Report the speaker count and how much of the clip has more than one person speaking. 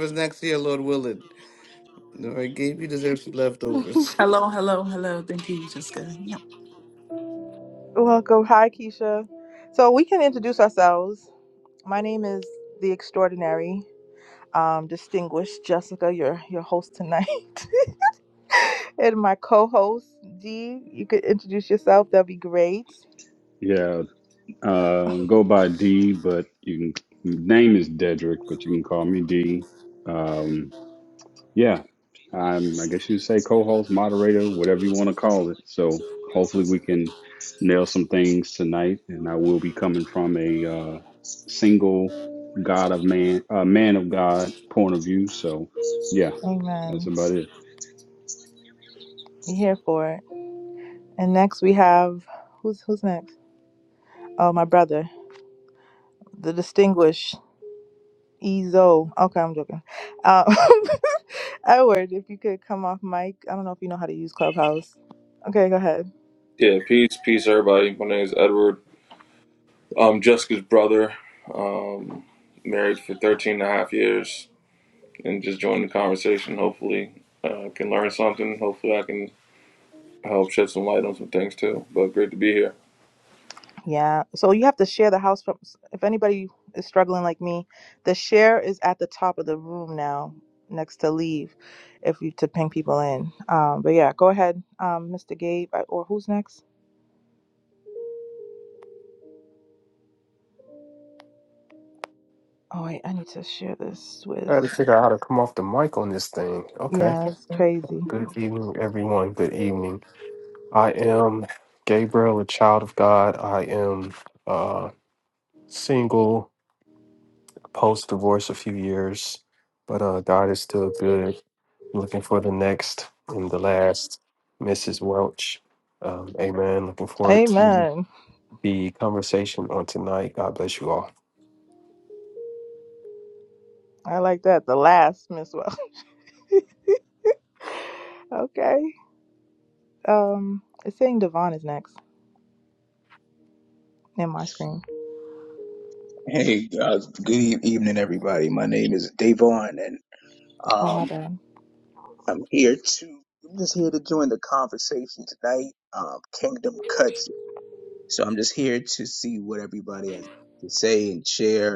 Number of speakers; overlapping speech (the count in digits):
7, about 1%